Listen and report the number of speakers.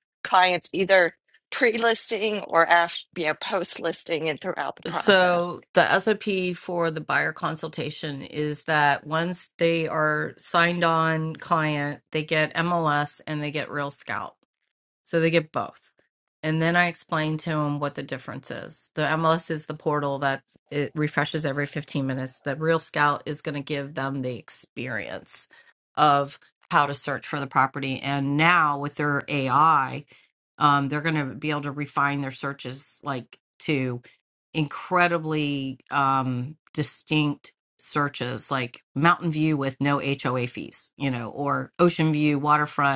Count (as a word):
two